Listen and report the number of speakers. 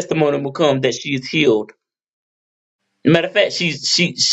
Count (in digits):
1